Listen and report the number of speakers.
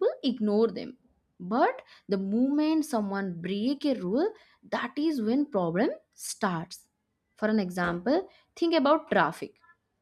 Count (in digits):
1